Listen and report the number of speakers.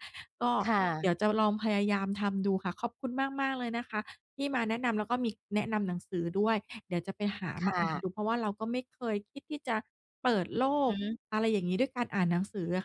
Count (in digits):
2